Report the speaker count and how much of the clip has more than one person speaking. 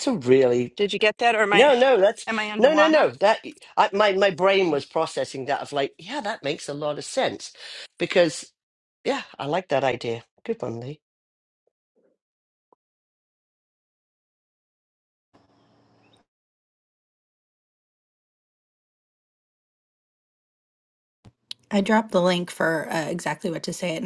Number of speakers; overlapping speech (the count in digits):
3, about 3%